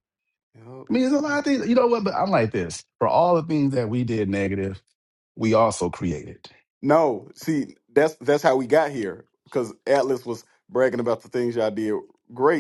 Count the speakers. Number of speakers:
two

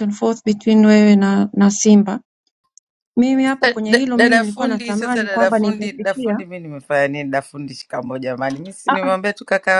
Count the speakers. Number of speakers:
two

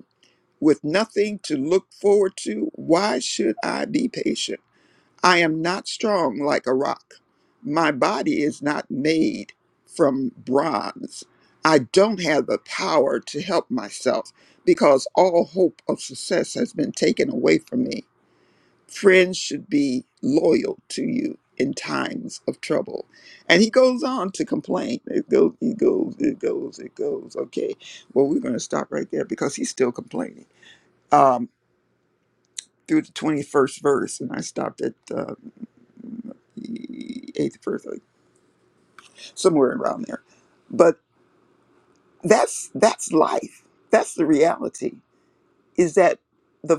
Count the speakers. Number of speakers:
one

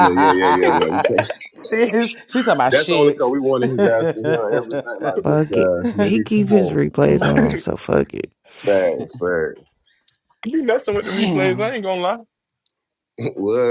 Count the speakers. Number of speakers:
four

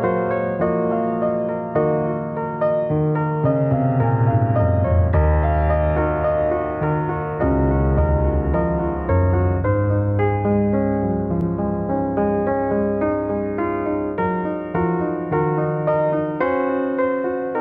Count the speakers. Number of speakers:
zero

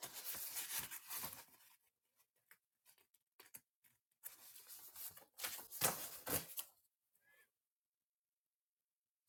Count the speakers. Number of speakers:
zero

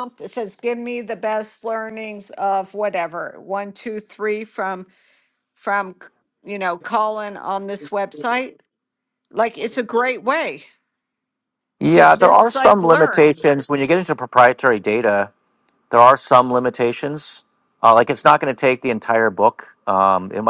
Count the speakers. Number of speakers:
two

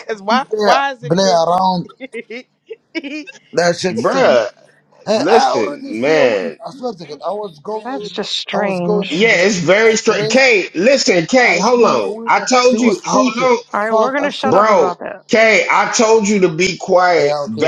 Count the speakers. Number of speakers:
four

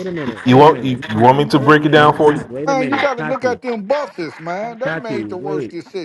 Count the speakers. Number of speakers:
three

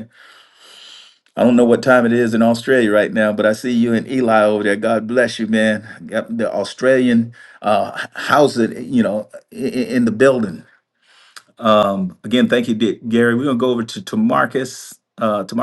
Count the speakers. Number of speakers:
one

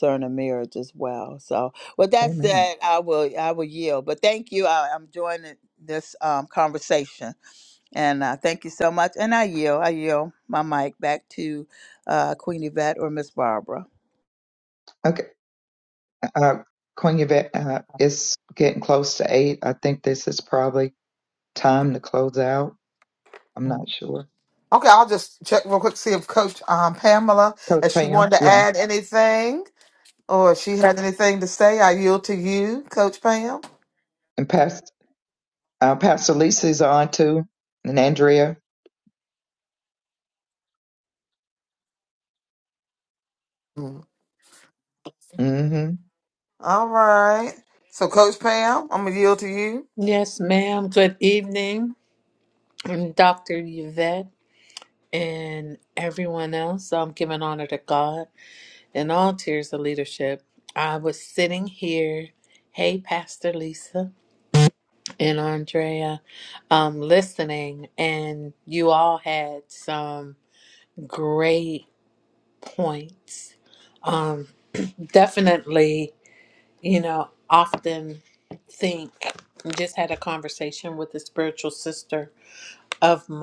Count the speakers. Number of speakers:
four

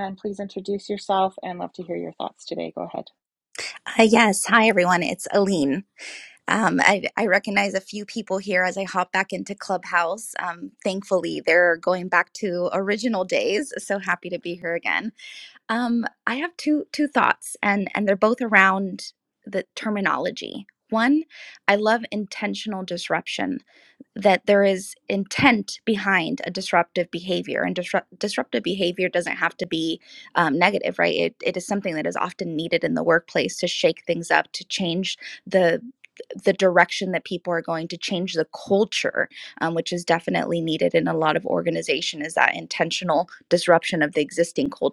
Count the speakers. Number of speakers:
two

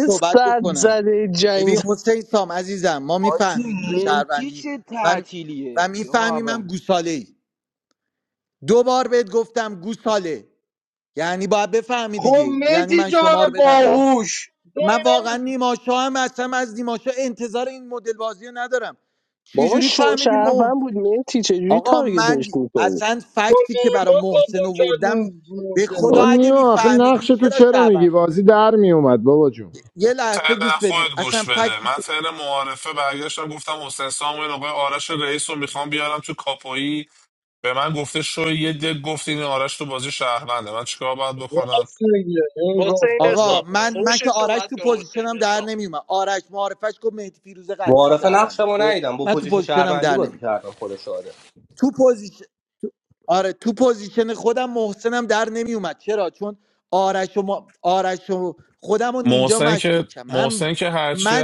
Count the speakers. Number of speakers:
seven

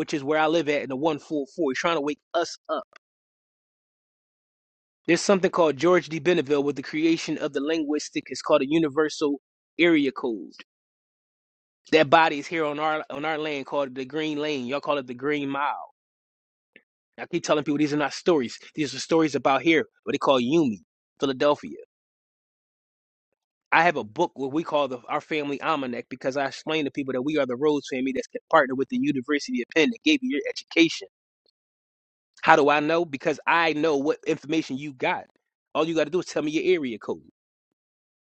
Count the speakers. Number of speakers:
one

